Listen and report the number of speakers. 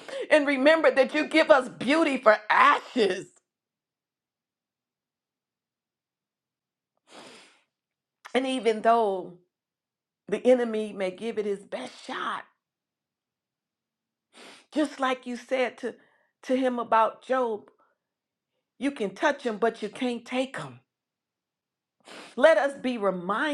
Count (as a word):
one